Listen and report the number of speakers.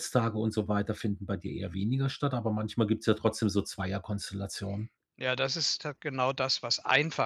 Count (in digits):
2